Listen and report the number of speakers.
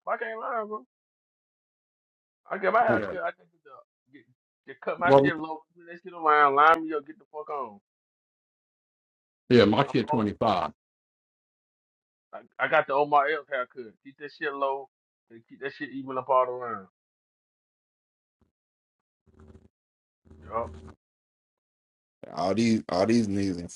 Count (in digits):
3